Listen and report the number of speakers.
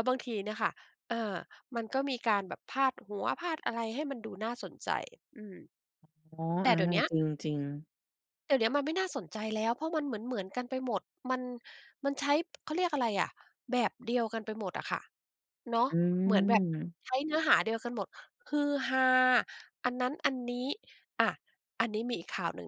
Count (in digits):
2